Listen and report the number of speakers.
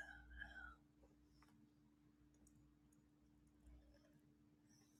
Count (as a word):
zero